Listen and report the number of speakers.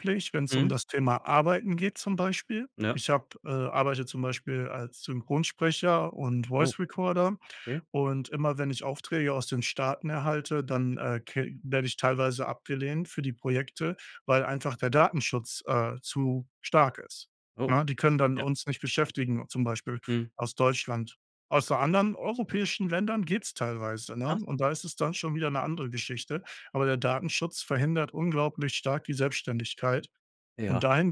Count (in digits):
2